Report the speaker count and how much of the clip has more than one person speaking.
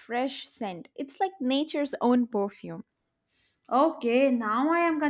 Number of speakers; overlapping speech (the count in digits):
2, no overlap